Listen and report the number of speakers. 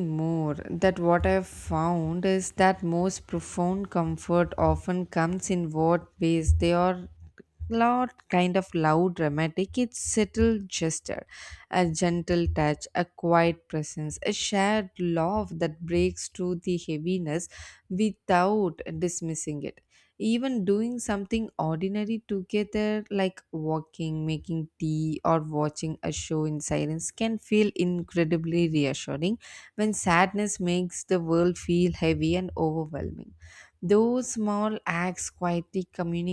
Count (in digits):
1